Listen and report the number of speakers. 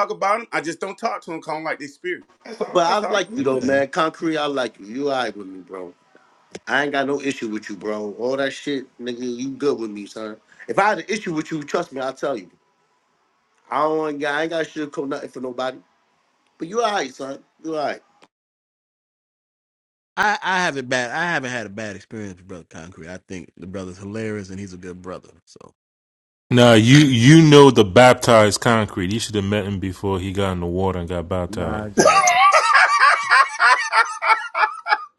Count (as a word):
four